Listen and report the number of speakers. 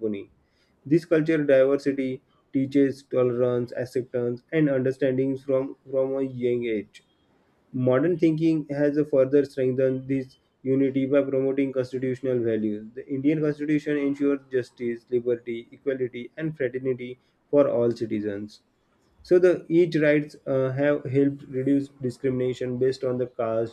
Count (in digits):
1